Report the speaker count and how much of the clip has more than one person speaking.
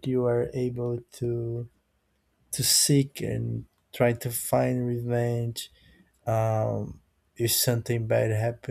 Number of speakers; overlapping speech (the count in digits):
1, no overlap